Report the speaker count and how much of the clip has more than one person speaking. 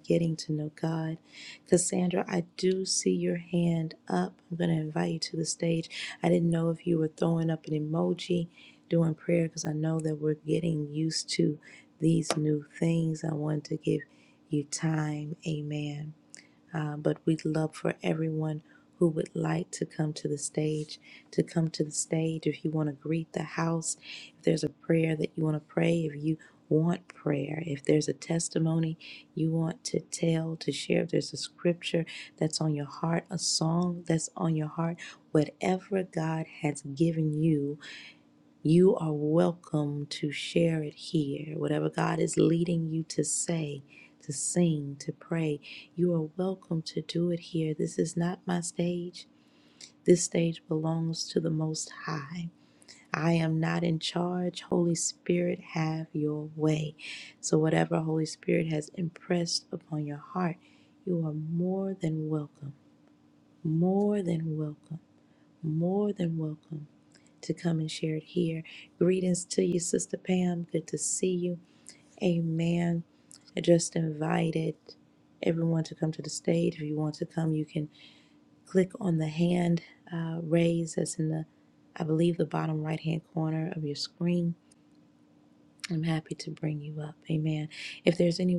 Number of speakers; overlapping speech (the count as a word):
one, no overlap